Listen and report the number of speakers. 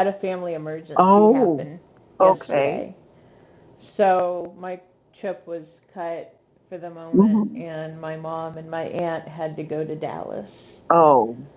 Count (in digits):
2